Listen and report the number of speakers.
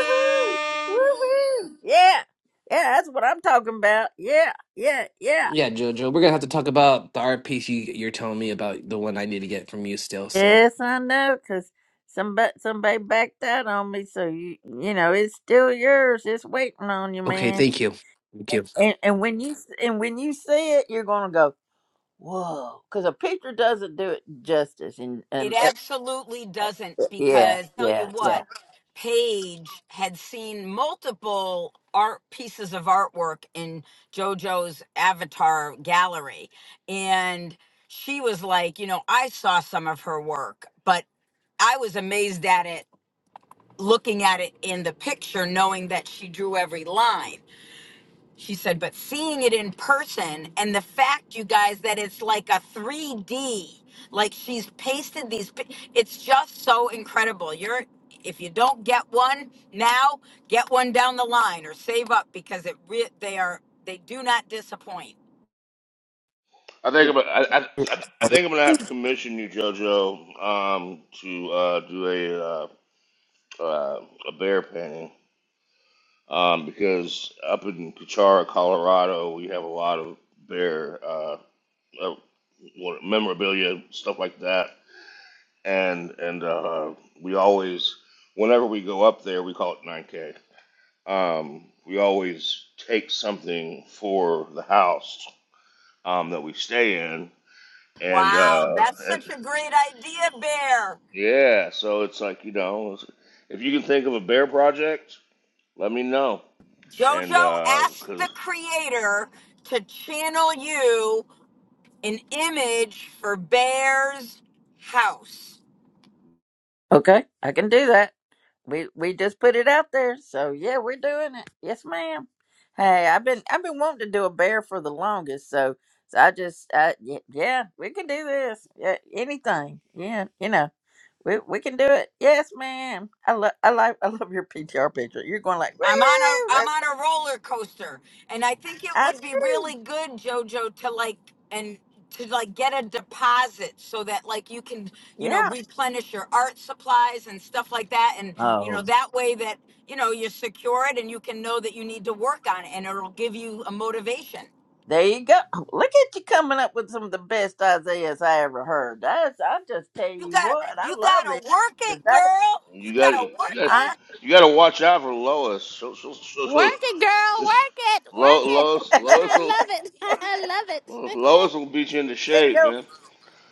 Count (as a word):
five